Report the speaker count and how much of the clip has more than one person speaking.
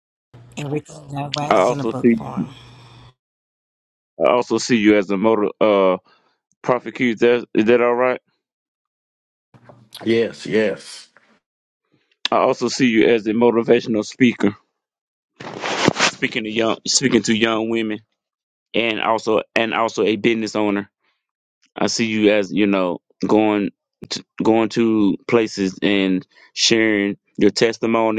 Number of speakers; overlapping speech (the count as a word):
three, about 3%